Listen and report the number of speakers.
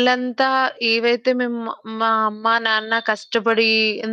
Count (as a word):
one